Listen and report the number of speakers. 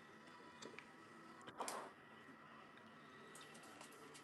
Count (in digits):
0